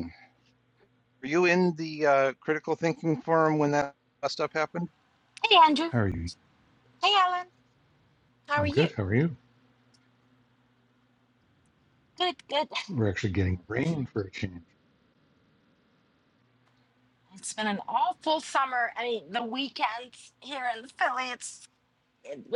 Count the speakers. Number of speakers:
3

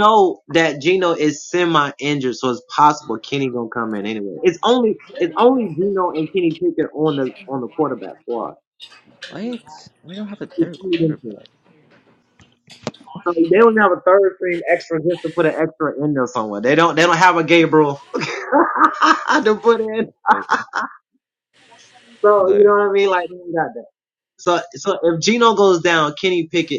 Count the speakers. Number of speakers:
2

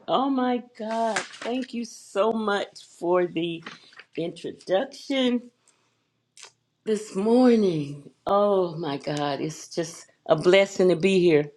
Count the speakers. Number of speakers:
1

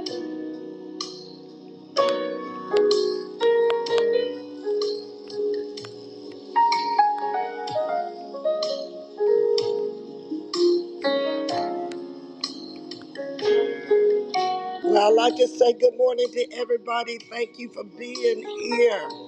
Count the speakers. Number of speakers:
1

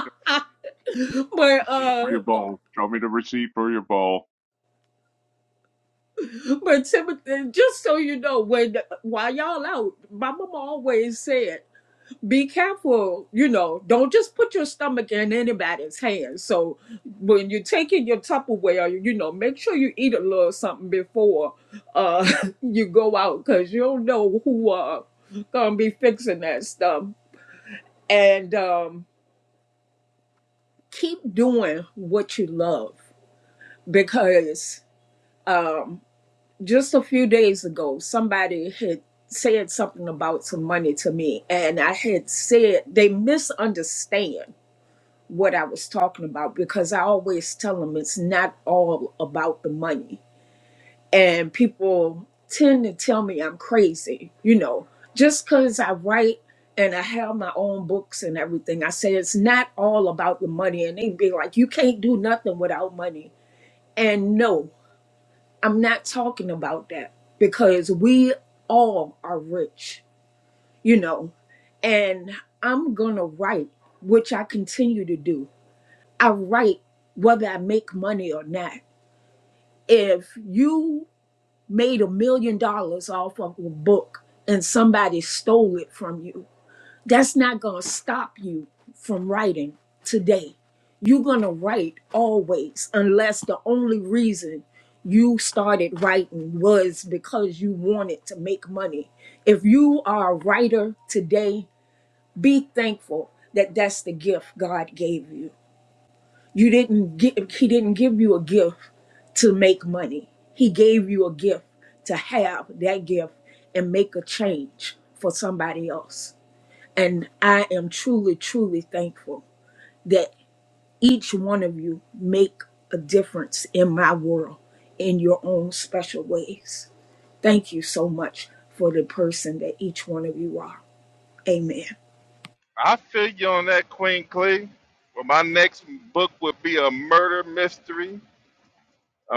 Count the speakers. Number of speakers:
3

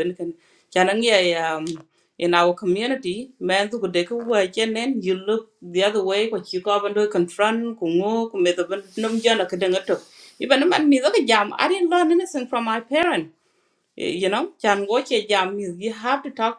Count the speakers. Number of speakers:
1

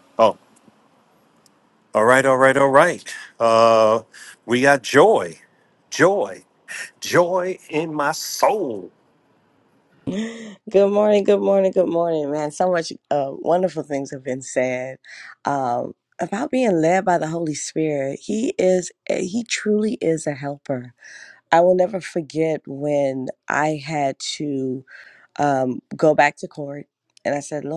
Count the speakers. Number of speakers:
2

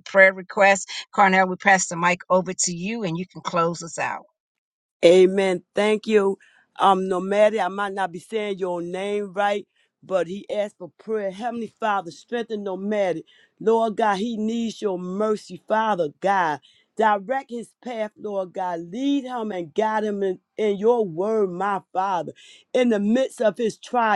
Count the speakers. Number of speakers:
2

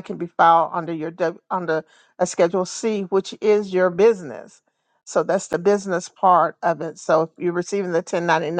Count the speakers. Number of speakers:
1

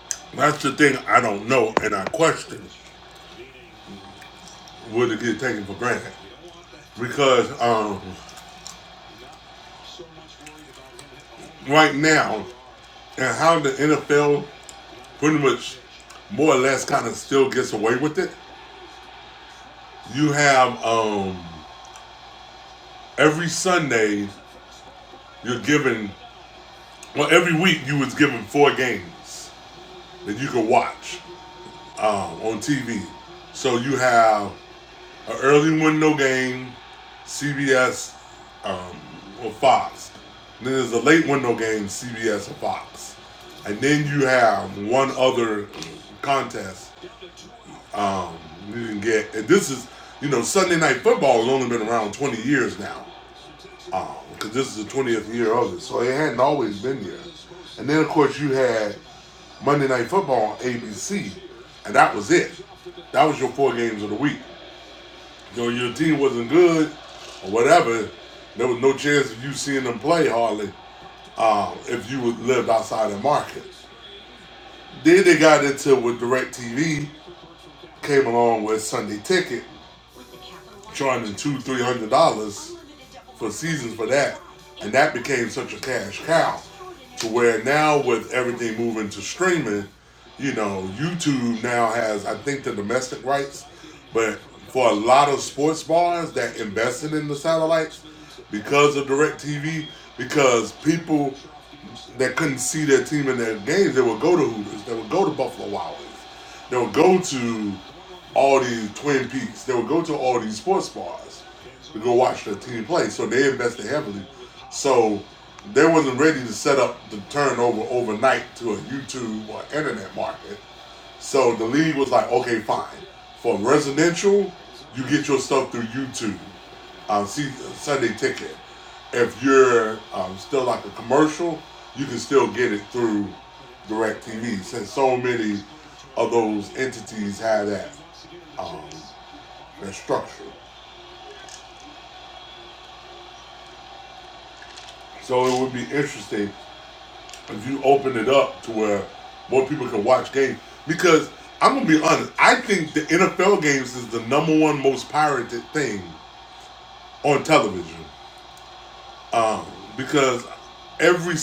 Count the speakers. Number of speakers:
1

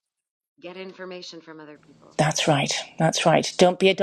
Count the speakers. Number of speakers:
2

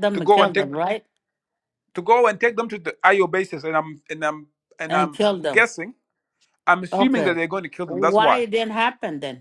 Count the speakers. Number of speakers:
2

